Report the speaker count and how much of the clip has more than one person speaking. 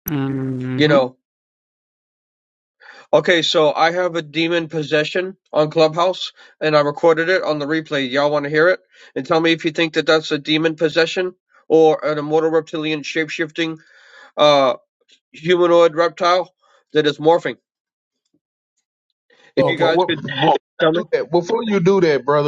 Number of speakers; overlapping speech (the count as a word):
three, about 4%